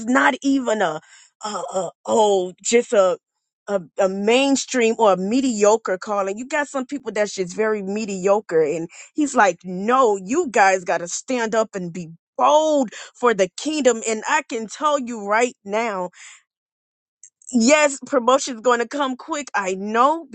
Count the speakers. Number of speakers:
1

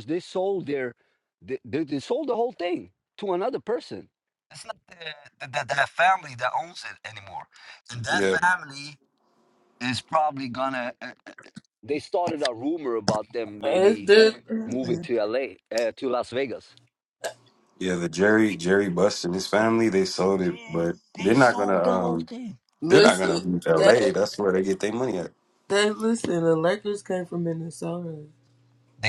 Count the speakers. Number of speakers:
3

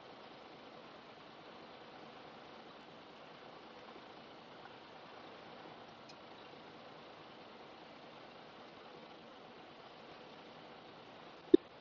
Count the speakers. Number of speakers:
0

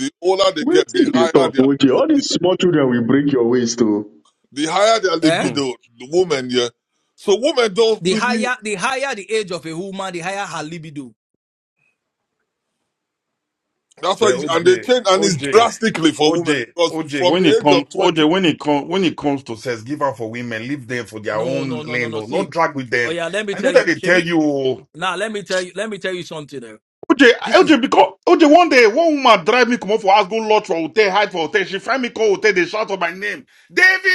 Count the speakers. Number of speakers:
4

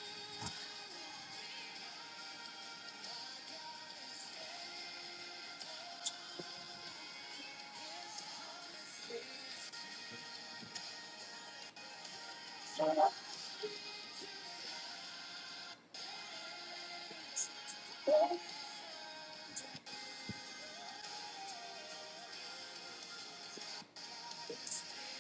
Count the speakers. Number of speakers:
0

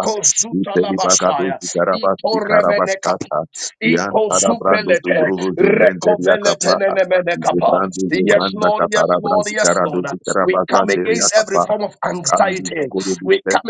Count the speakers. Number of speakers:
2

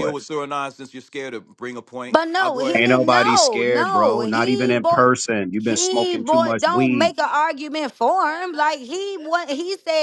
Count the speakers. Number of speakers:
3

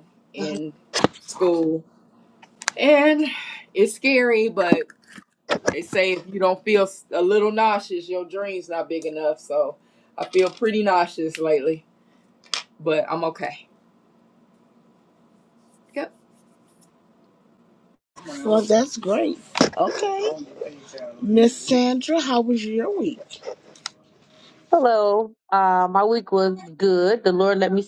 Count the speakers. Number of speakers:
3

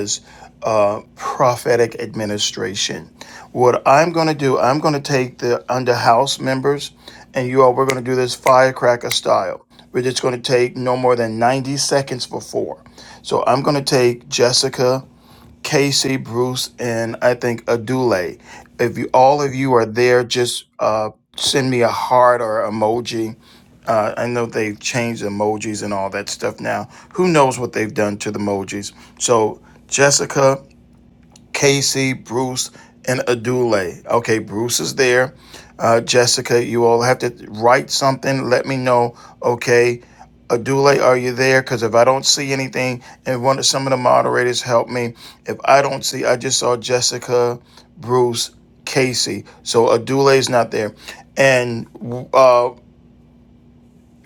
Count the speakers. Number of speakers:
1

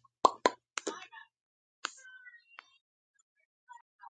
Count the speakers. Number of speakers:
0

